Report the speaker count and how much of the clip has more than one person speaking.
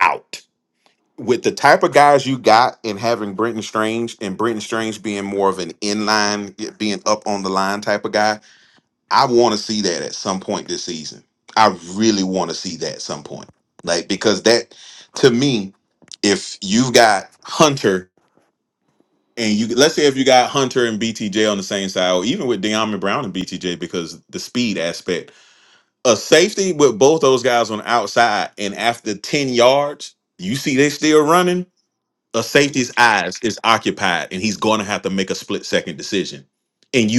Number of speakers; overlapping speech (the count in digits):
1, no overlap